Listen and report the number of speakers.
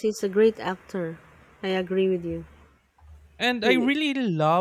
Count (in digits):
2